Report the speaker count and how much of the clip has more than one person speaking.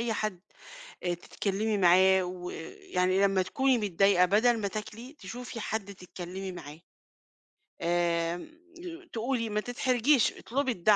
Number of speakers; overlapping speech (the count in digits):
1, no overlap